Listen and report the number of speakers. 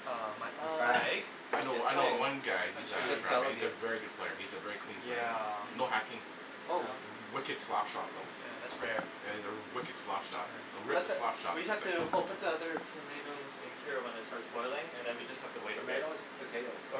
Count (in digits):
4